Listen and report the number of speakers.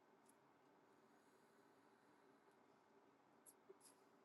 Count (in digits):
0